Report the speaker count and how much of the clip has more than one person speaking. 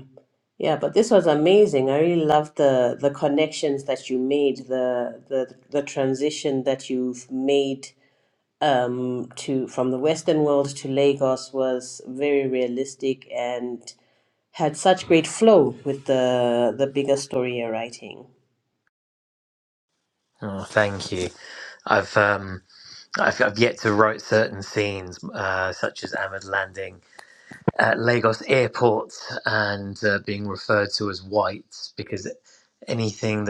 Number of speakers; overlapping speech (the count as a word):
two, no overlap